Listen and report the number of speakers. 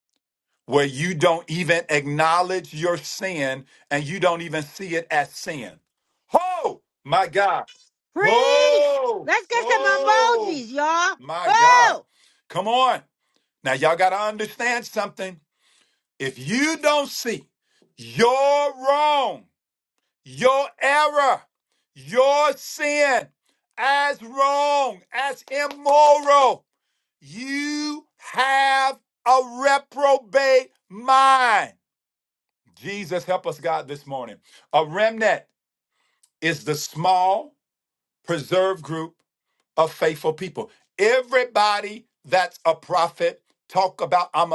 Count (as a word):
two